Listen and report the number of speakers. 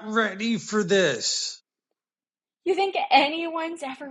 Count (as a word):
two